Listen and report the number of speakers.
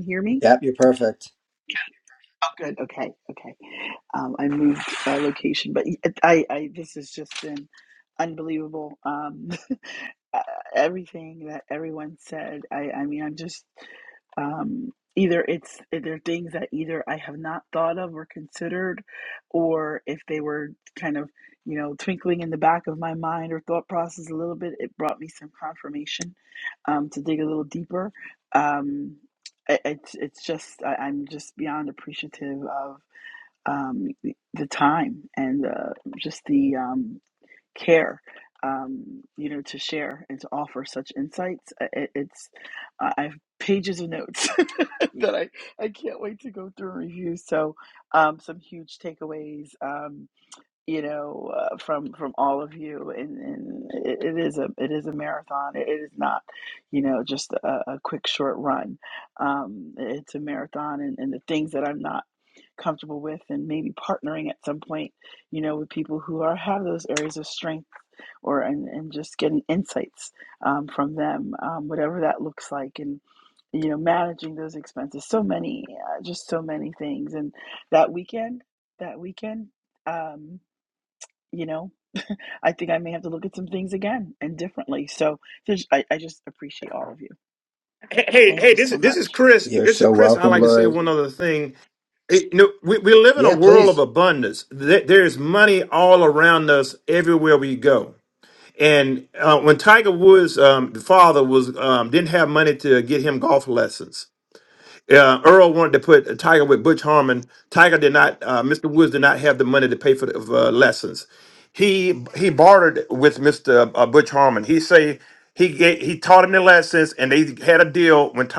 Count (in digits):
3